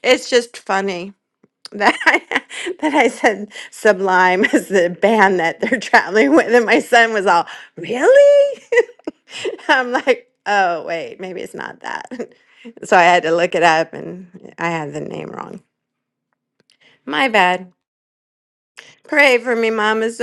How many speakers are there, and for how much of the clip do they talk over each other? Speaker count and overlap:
1, no overlap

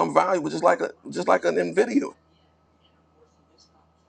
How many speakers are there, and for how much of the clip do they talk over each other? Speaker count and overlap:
1, no overlap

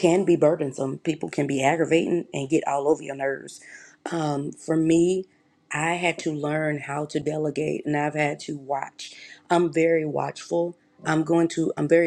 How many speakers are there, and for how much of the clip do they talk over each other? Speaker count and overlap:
1, no overlap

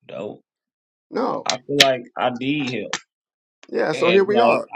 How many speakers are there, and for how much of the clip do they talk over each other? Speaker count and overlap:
2, about 15%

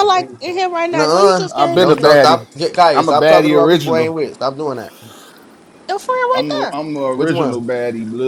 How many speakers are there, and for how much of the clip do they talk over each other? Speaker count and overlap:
3, about 41%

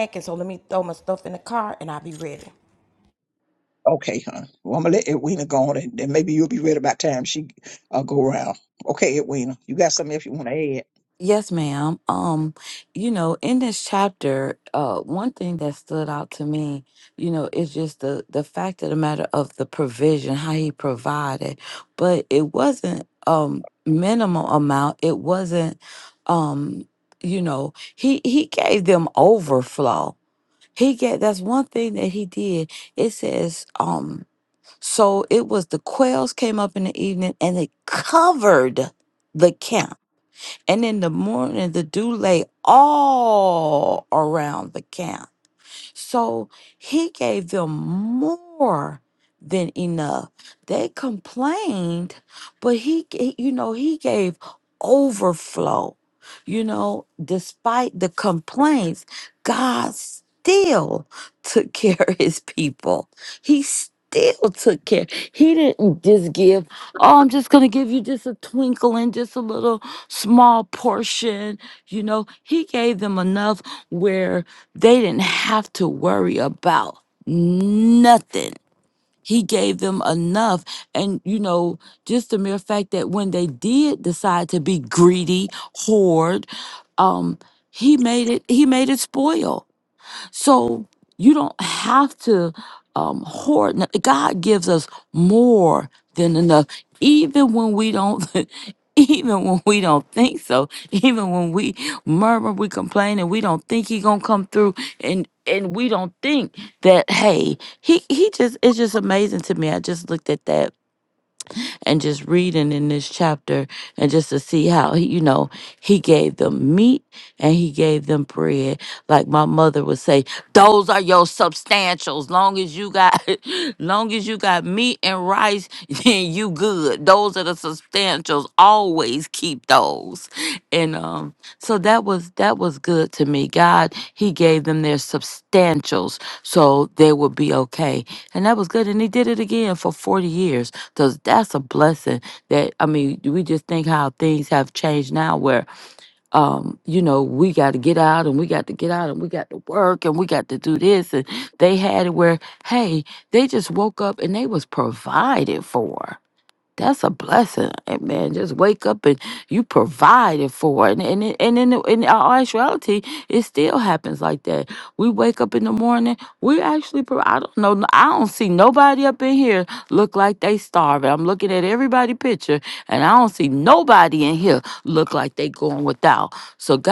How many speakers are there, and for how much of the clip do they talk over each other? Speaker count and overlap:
3, no overlap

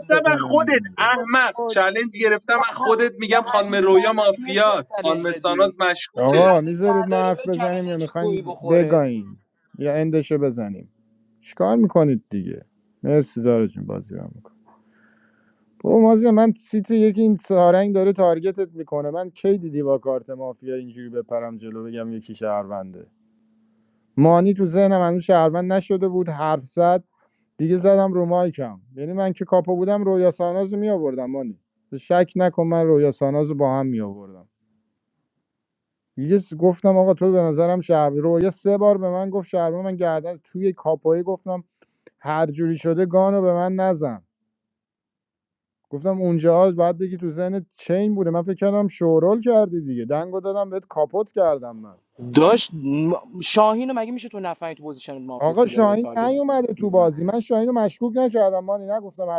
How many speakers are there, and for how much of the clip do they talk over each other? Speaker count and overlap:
3, about 15%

